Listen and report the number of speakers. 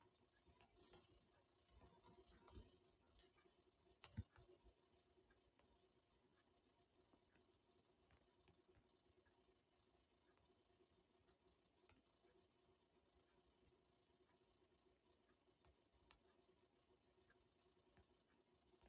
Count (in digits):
0